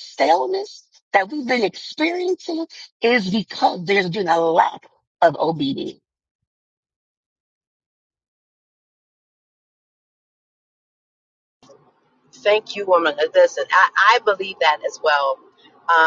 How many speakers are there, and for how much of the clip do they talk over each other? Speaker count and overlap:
2, no overlap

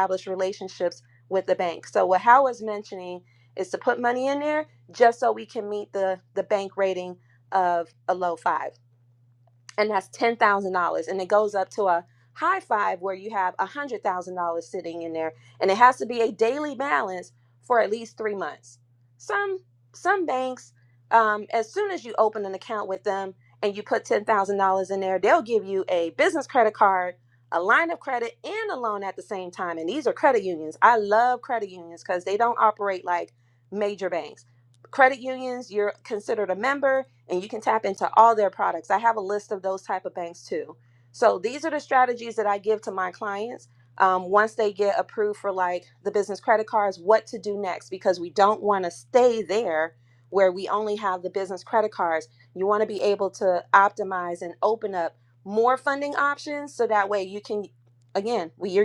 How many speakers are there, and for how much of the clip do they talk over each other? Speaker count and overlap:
1, no overlap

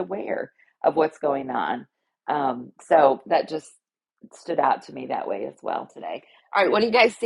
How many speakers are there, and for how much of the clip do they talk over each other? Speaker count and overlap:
1, no overlap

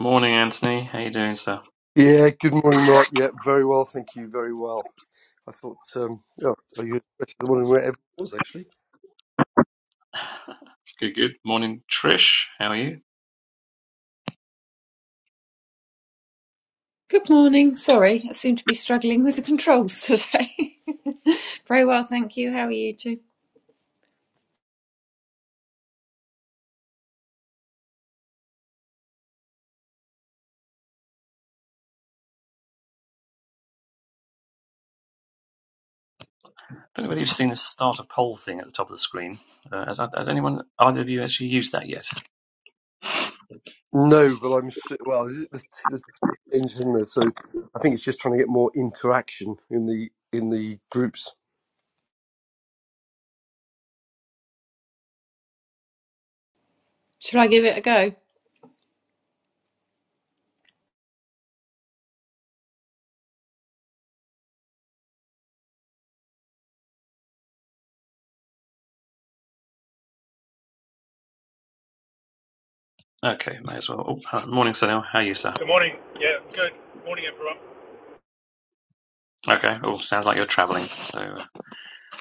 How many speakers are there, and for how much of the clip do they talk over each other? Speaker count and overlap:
4, under 1%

